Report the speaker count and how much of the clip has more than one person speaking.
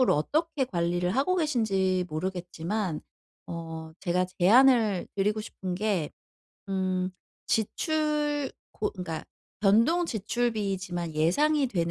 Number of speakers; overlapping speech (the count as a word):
one, no overlap